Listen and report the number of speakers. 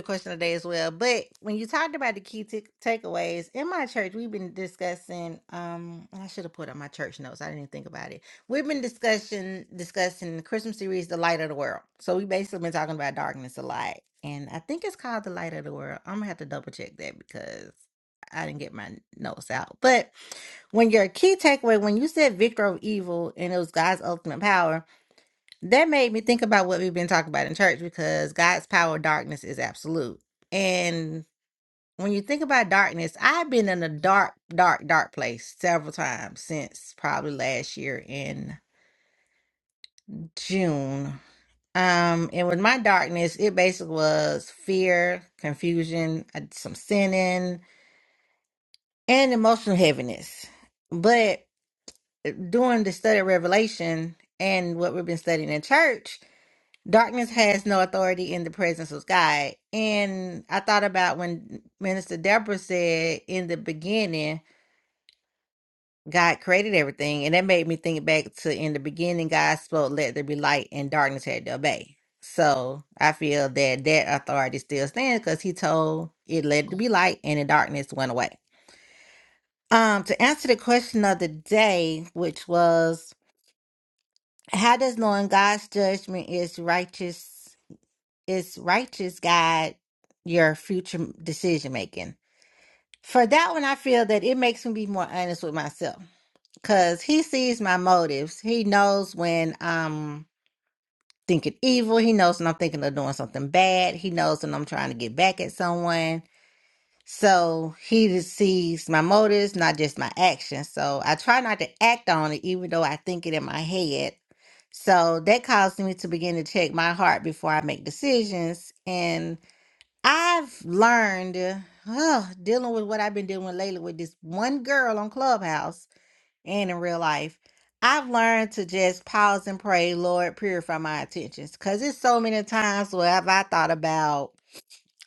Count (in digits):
1